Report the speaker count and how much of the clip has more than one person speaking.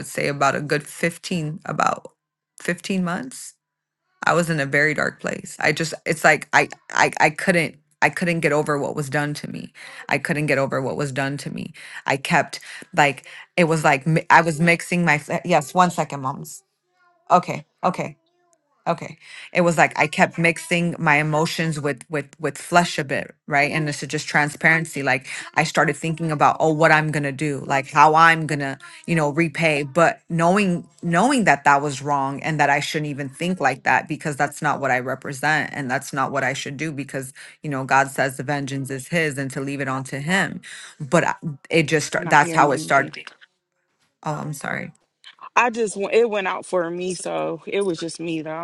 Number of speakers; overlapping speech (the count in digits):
2, about 2%